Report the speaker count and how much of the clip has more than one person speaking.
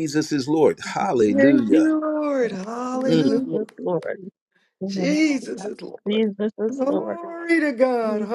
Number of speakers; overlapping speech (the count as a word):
three, about 40%